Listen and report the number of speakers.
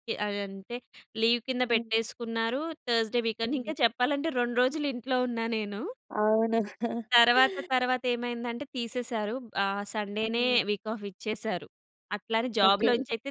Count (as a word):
two